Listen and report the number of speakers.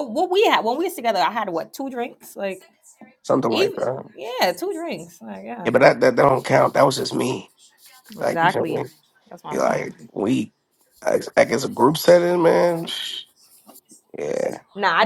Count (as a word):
two